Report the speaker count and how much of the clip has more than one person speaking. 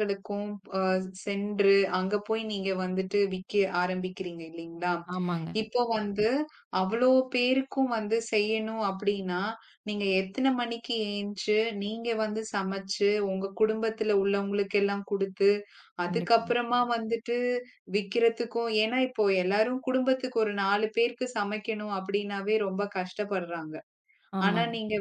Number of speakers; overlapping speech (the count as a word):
two, about 3%